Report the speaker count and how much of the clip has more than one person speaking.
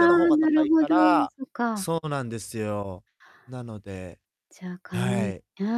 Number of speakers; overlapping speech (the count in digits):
2, about 25%